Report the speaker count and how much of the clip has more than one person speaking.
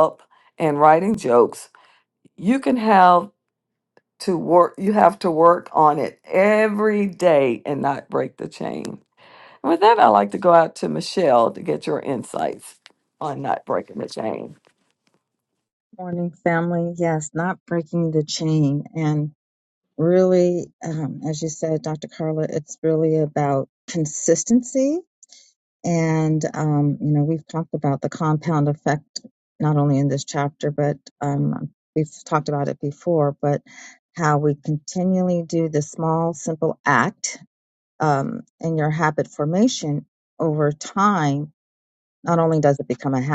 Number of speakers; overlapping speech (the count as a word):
two, no overlap